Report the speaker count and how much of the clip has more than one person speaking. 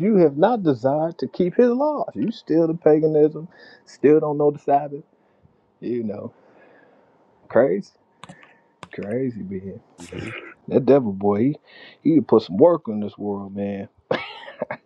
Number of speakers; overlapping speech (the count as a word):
one, no overlap